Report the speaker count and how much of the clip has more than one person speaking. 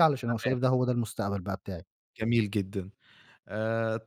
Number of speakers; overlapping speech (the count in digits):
2, about 7%